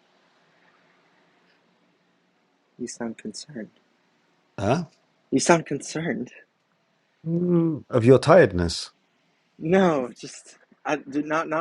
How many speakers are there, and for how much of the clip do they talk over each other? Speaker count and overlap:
two, no overlap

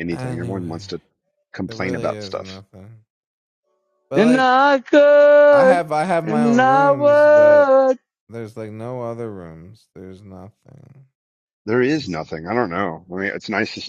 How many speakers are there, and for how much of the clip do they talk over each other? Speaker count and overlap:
three, about 26%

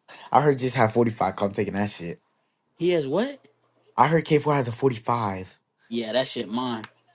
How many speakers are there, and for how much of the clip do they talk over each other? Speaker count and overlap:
two, no overlap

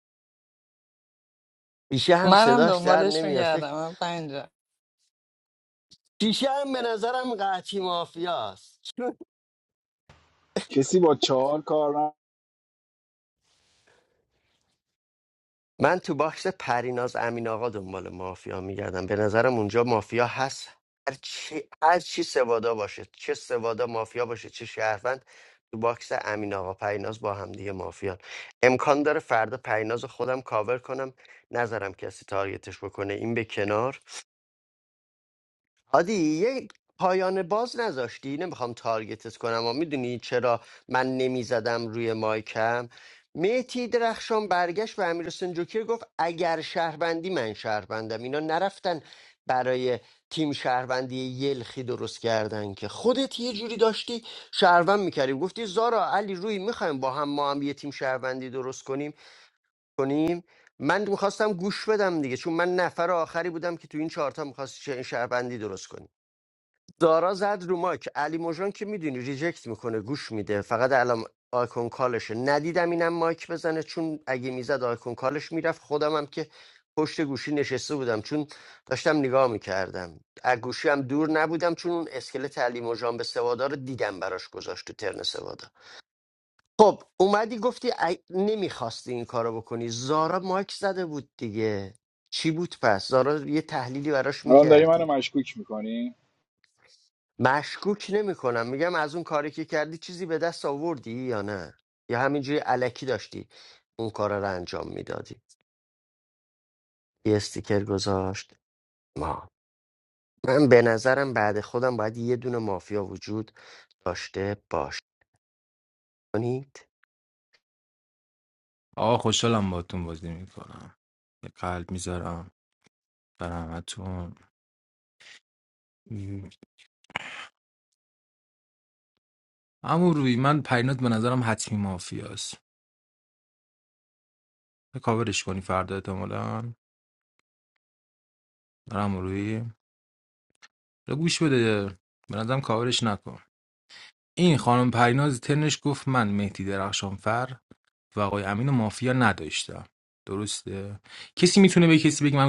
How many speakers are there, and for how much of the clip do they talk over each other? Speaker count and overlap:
four, about 1%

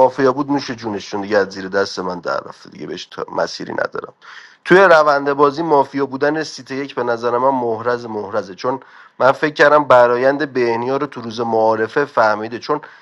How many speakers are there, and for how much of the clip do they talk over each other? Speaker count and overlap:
one, no overlap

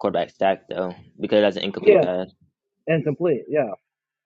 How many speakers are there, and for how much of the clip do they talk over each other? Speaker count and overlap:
two, about 7%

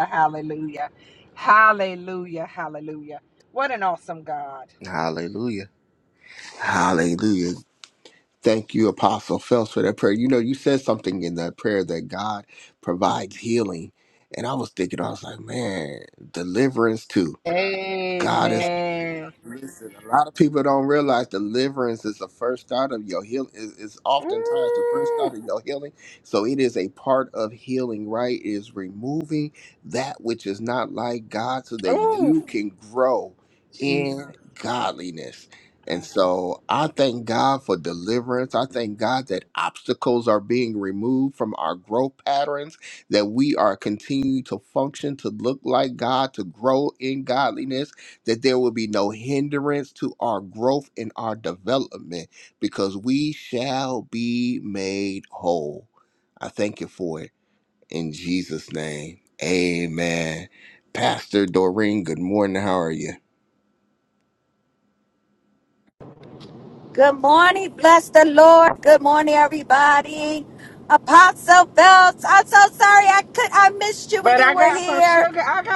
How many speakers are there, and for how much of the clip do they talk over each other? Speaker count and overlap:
three, about 4%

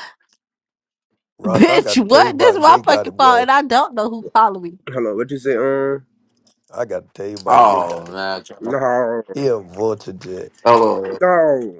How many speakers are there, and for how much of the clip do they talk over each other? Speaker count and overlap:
four, about 23%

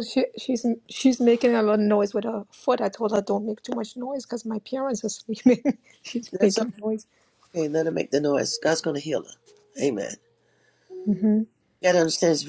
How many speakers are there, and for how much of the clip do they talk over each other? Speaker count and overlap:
two, about 2%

